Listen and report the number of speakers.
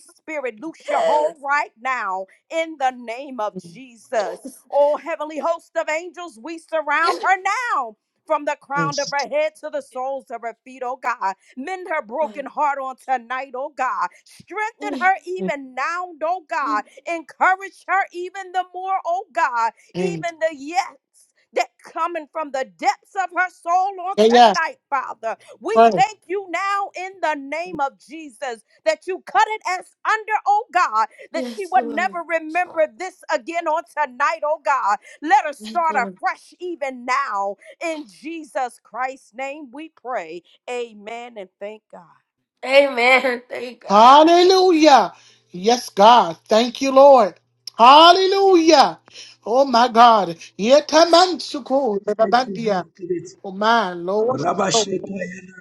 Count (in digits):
4